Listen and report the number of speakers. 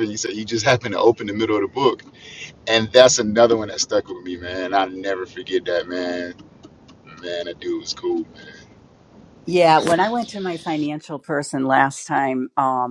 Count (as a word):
two